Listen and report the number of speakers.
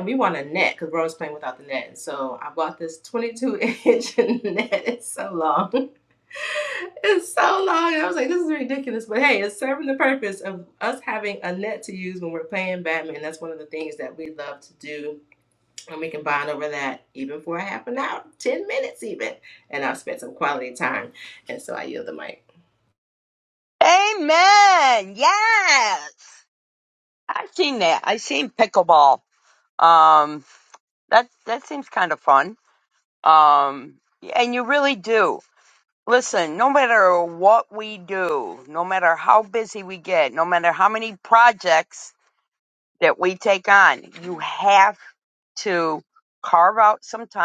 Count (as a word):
two